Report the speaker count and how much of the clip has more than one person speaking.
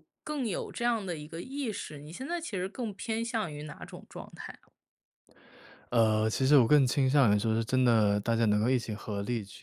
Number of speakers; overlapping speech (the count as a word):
two, no overlap